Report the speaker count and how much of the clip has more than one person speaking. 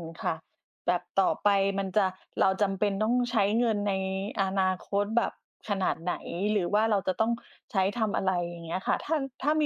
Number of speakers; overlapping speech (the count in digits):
1, no overlap